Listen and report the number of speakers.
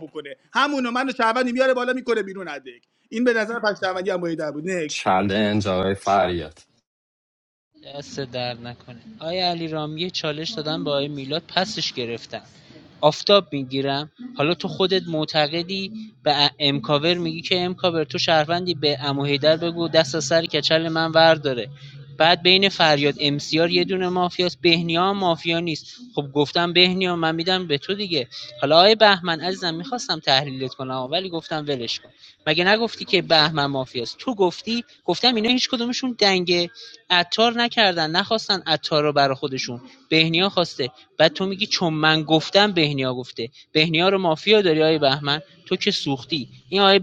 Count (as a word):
three